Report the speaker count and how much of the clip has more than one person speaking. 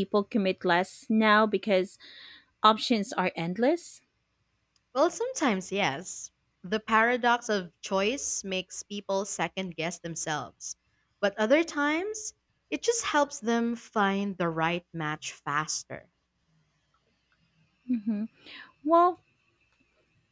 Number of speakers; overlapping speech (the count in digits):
2, no overlap